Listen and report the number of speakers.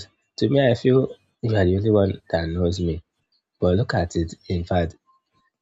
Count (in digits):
1